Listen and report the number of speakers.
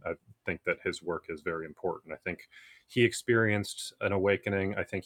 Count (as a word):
one